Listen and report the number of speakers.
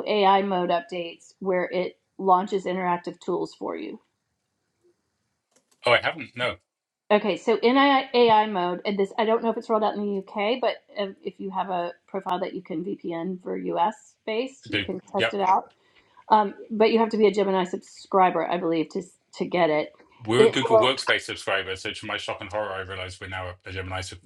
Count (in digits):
2